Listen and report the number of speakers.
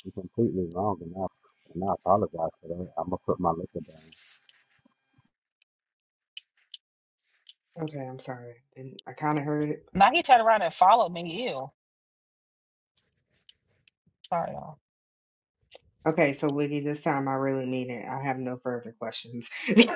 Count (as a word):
three